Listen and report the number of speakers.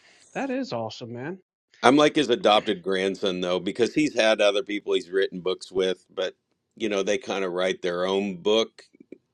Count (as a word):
two